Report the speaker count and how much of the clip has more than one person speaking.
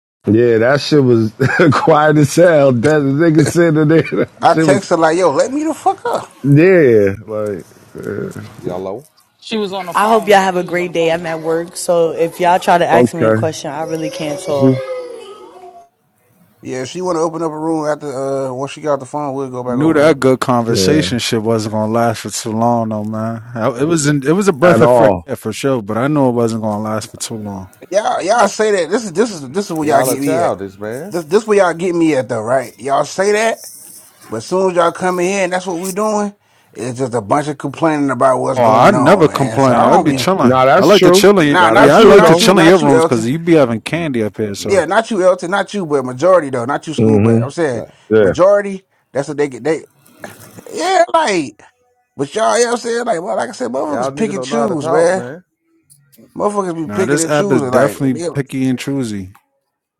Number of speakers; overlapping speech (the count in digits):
6, about 22%